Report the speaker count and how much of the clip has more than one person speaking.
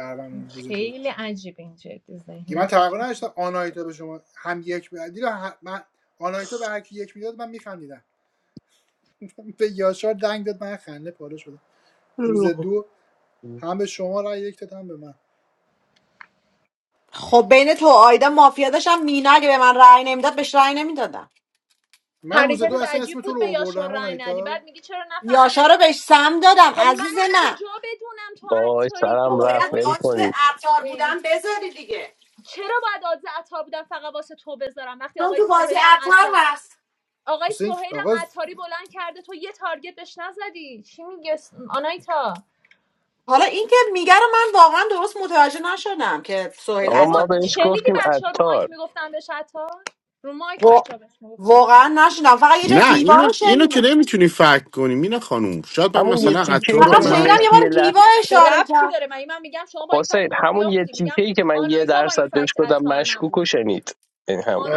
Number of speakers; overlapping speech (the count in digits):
5, about 27%